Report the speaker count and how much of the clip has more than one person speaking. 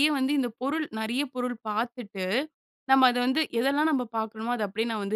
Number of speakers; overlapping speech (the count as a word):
one, no overlap